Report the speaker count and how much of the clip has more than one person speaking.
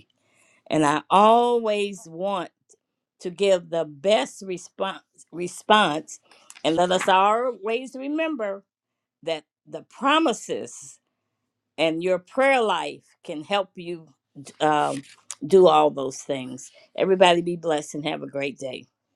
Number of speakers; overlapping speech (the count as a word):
one, no overlap